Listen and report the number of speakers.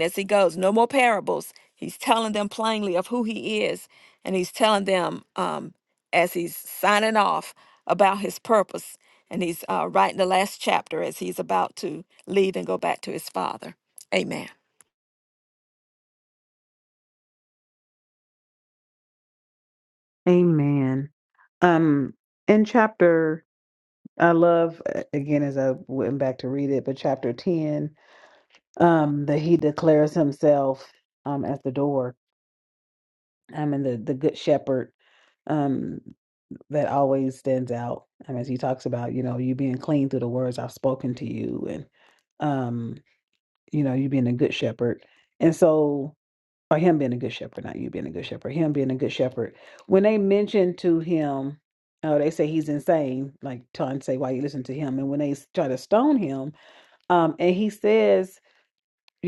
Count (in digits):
2